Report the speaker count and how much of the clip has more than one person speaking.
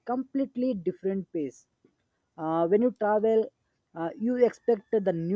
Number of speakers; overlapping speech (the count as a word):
one, no overlap